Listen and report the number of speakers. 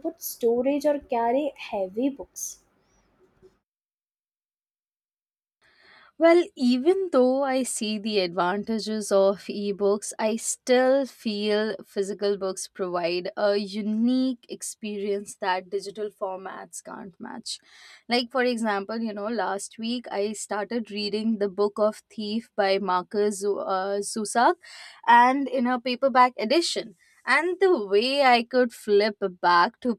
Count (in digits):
2